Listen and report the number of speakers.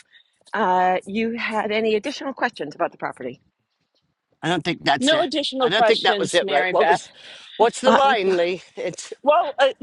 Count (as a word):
three